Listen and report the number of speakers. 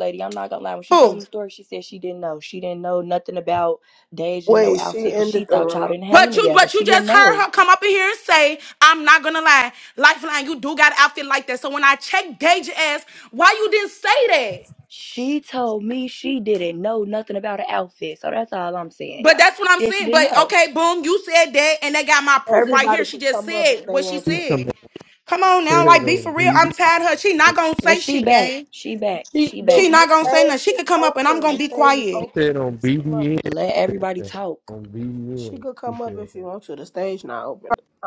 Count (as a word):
four